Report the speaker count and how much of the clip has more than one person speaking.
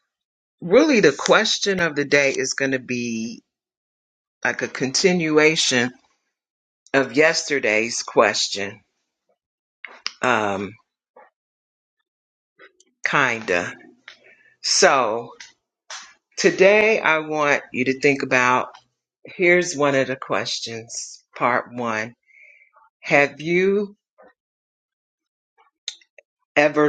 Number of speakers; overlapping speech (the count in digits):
1, no overlap